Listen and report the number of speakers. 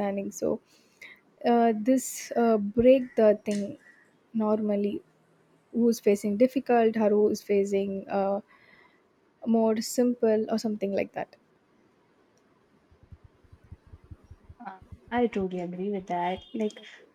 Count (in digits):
2